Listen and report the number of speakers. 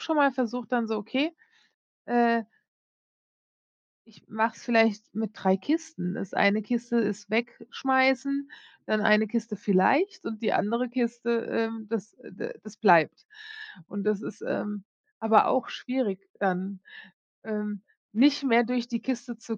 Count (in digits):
1